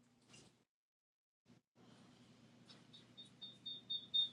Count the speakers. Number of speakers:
0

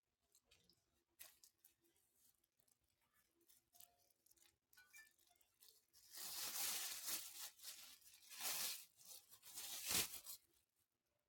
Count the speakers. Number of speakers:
0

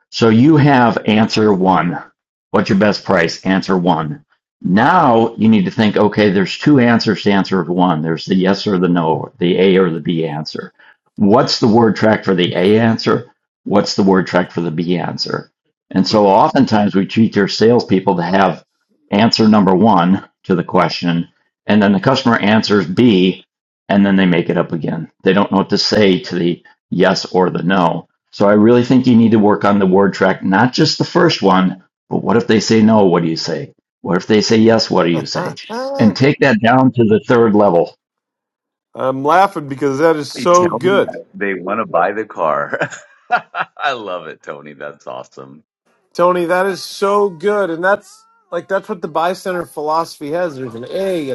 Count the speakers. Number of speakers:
3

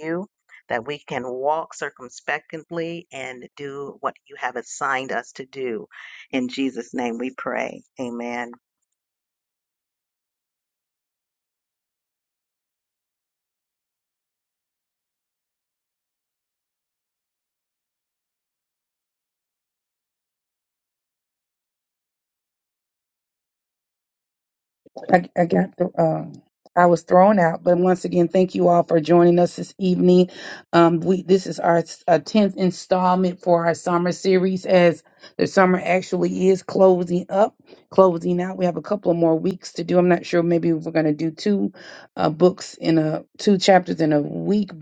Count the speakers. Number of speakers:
2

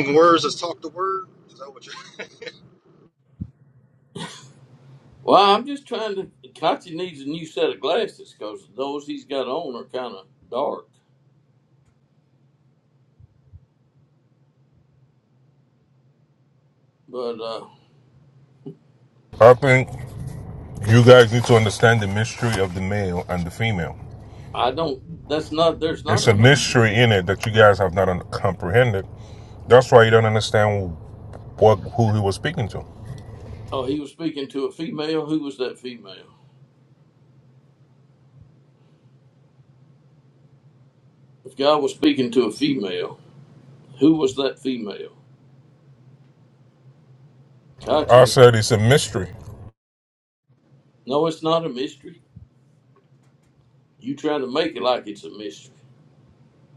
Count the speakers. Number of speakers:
3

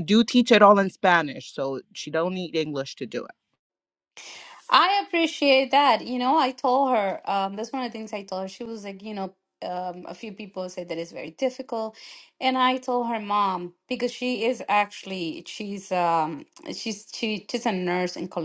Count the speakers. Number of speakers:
2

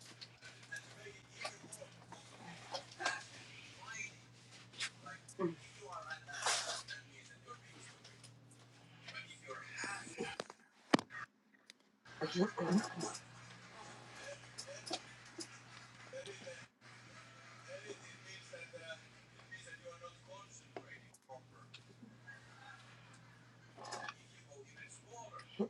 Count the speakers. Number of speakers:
0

